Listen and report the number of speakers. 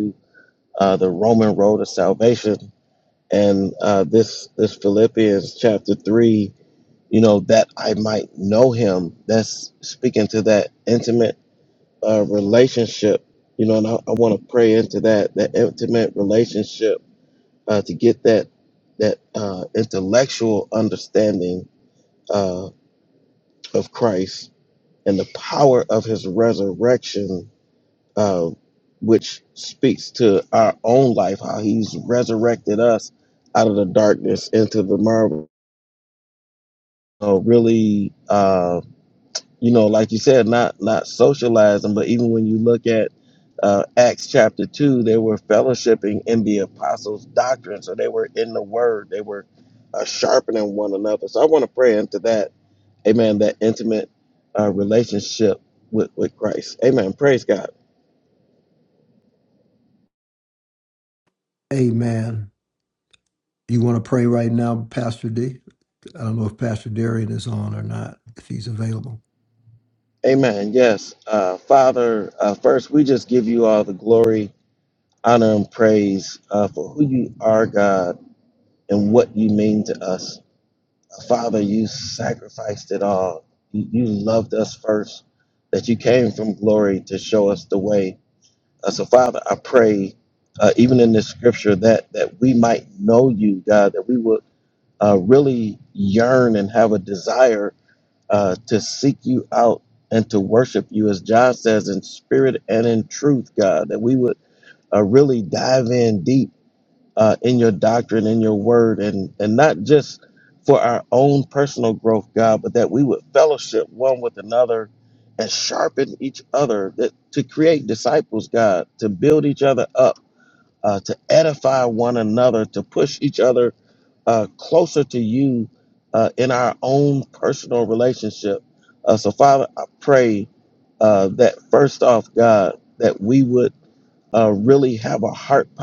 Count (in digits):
2